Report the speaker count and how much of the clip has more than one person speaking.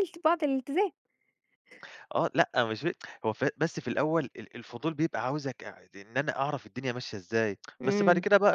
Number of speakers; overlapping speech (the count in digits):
2, about 5%